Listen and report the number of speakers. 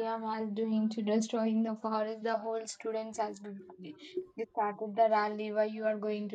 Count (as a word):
one